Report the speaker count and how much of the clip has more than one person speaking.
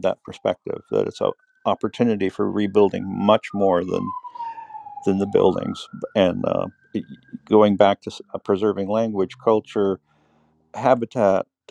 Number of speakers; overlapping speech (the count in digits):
1, no overlap